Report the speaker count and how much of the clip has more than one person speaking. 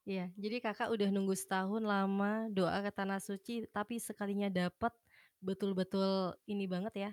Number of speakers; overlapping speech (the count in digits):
1, no overlap